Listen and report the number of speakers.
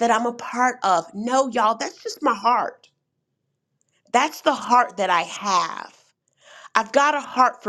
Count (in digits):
1